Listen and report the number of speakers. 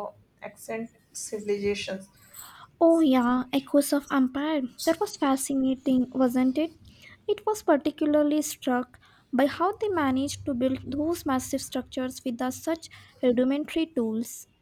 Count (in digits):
2